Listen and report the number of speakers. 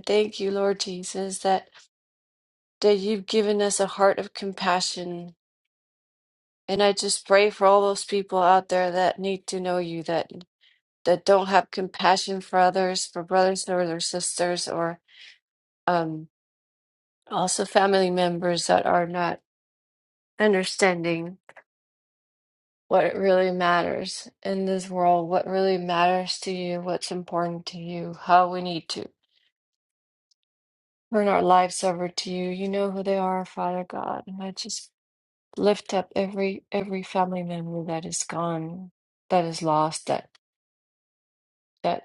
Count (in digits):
1